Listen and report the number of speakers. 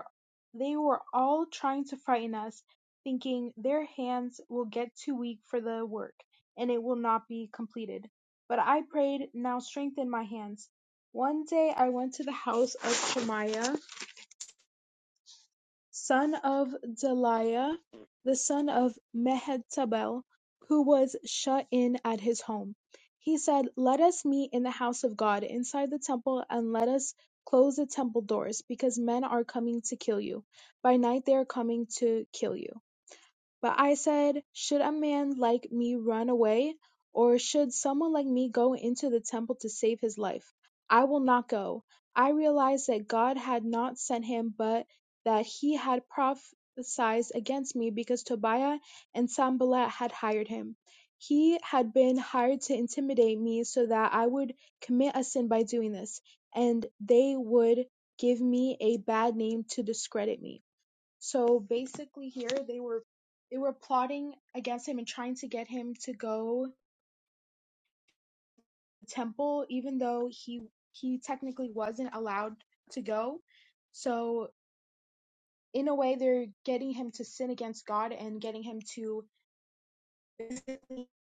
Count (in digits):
1